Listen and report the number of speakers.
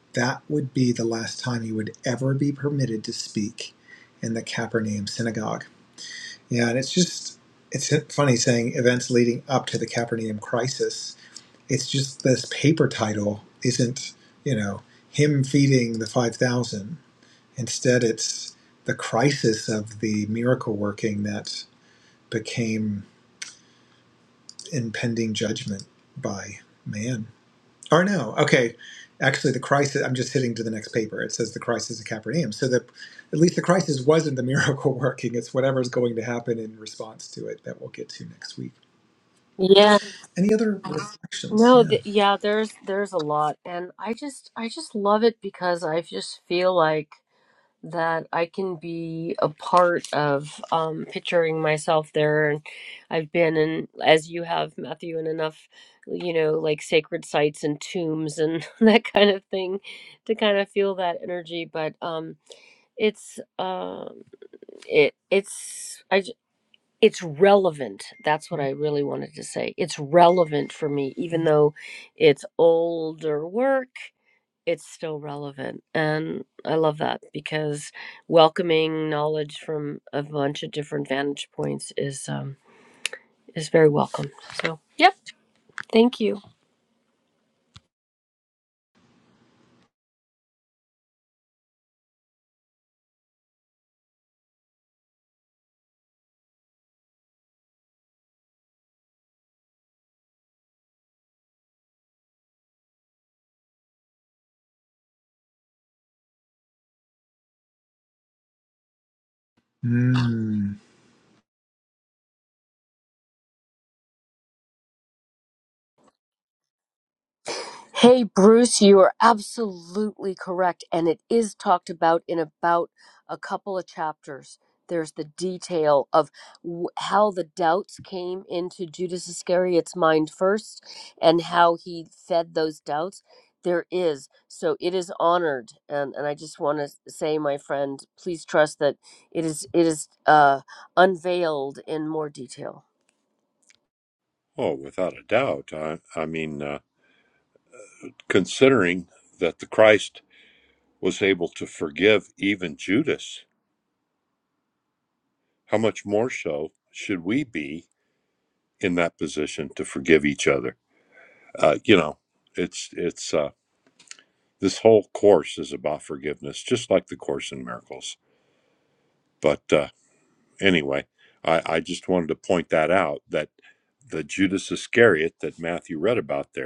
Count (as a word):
three